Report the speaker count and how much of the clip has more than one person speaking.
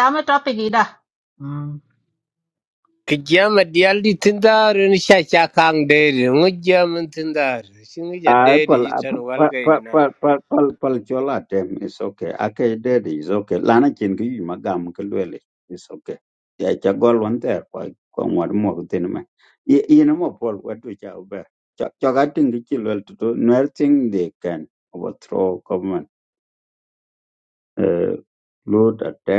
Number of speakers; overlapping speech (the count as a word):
three, about 4%